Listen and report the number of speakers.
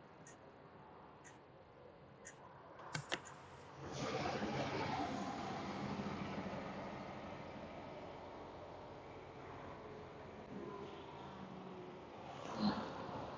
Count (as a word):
zero